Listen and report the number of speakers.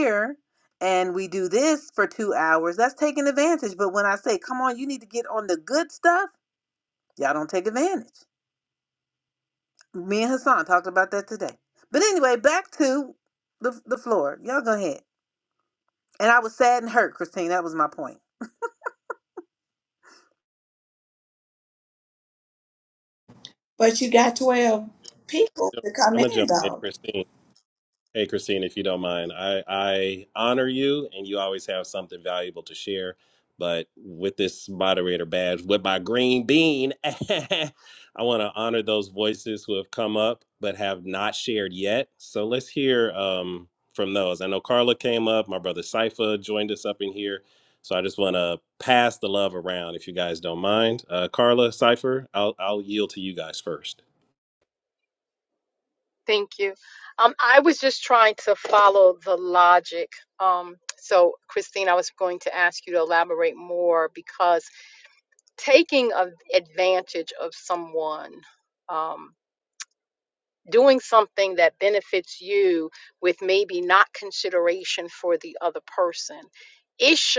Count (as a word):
four